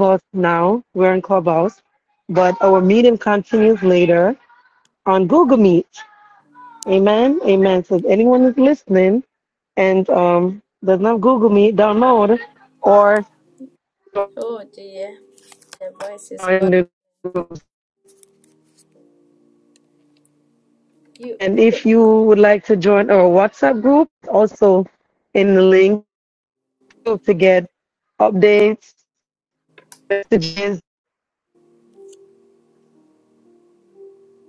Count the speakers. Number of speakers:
2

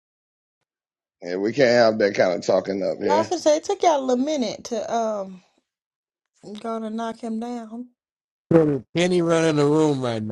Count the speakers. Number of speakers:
3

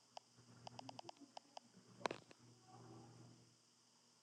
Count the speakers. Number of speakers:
0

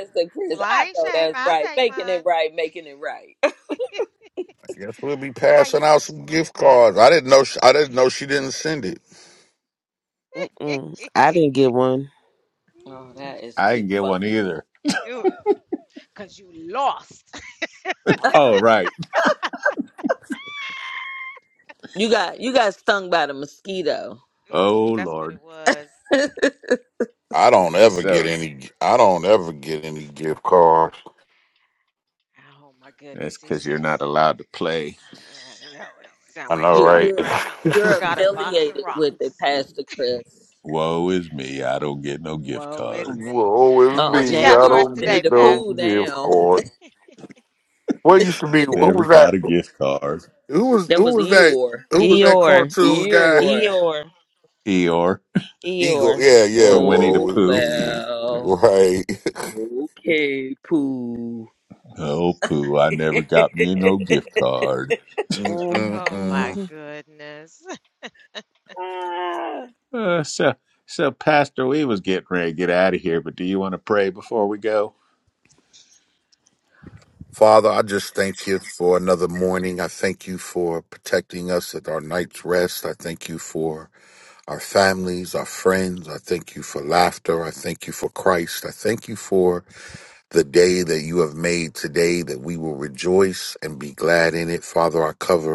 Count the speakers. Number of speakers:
5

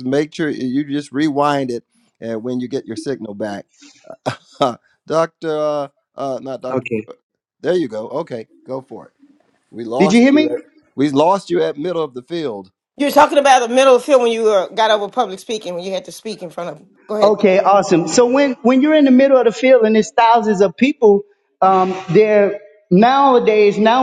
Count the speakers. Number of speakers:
3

